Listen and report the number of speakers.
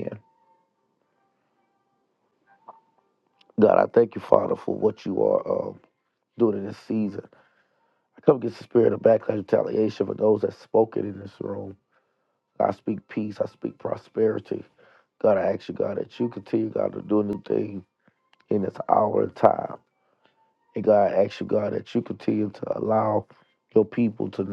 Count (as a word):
one